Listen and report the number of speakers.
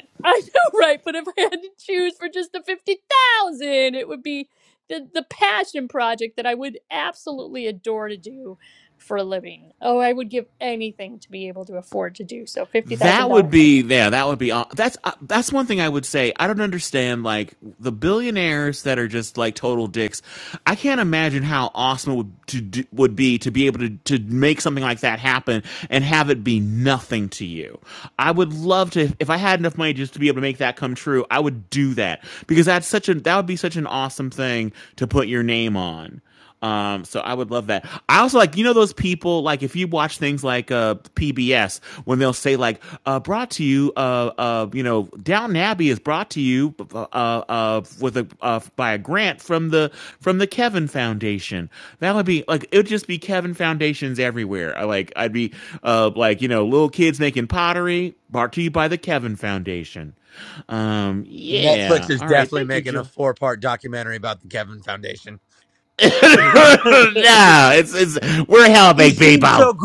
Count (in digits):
3